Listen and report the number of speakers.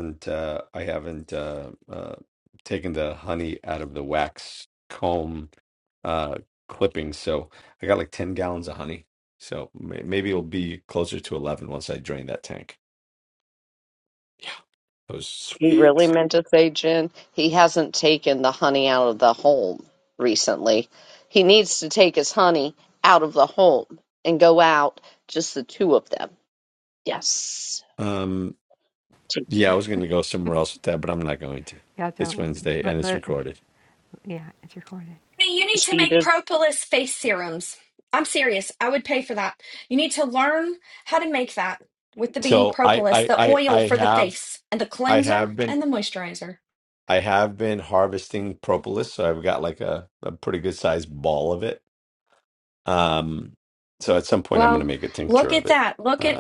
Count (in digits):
4